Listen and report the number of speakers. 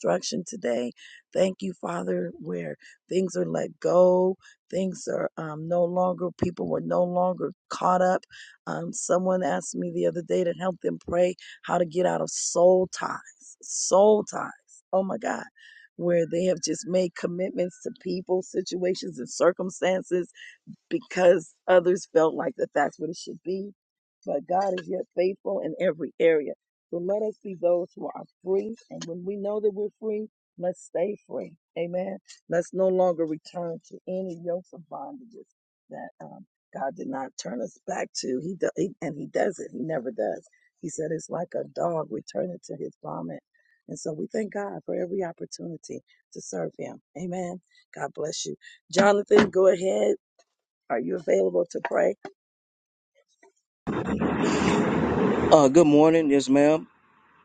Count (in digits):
2